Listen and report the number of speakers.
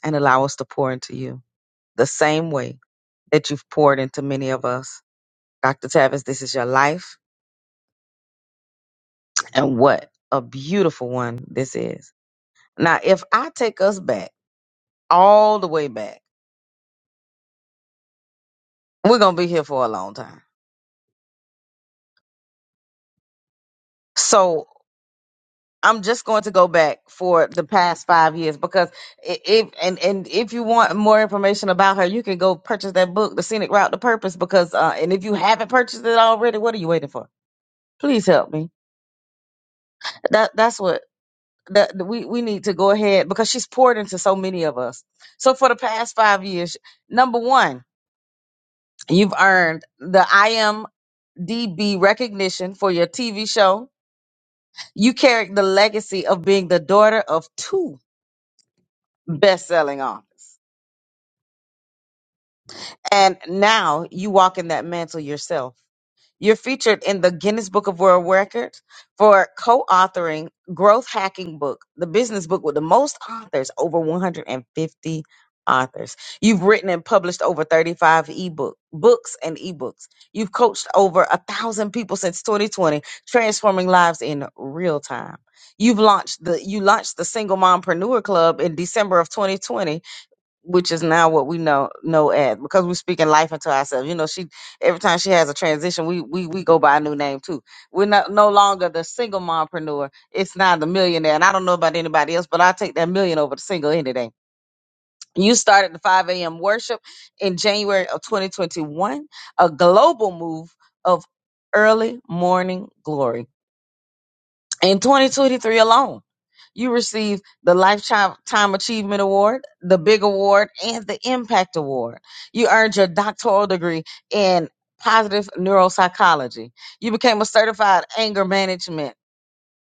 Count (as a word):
one